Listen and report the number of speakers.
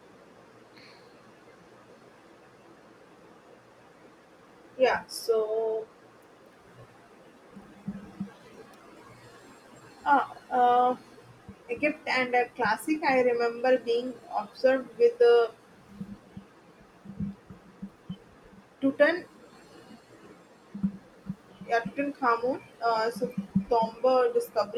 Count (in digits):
1